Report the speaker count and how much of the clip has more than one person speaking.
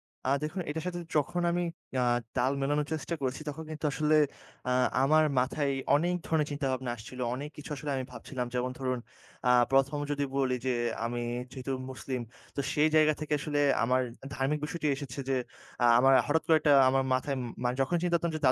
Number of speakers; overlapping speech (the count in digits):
1, no overlap